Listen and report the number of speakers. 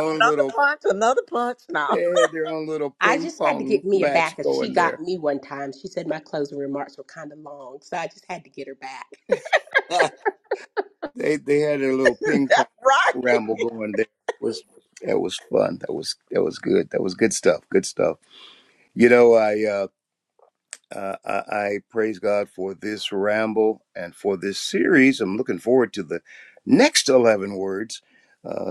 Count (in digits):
3